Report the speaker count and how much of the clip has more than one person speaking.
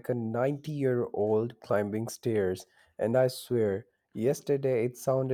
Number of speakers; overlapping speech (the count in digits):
1, no overlap